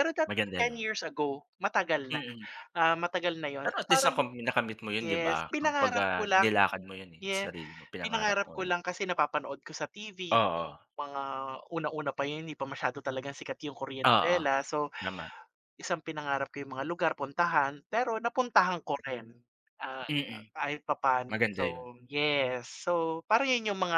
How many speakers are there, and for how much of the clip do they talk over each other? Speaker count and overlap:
2, about 22%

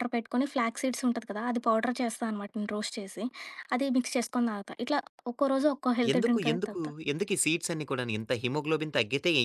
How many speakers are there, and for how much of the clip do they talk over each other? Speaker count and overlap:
2, about 9%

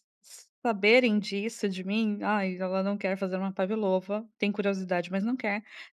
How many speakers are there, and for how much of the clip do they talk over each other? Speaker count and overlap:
1, no overlap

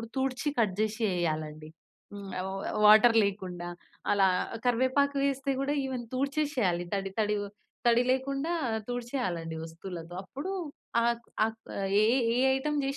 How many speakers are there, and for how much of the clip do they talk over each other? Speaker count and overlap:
1, no overlap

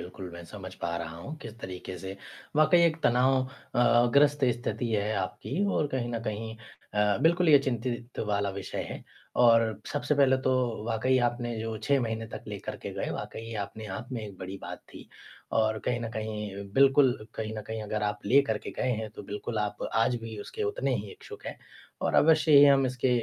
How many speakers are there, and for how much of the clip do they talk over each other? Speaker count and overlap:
1, no overlap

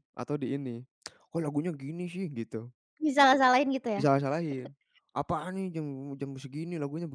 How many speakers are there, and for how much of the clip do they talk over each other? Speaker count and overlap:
2, about 1%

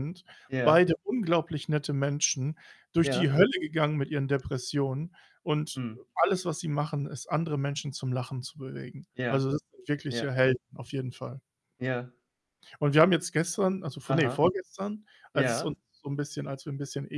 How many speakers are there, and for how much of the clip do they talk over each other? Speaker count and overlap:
2, about 10%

